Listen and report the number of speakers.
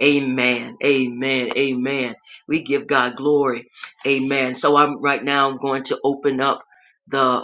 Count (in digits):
1